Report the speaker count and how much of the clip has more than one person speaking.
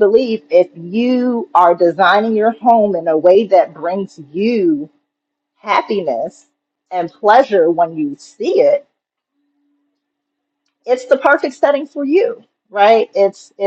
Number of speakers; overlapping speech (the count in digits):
1, no overlap